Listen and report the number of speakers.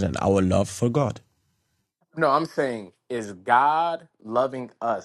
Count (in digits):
2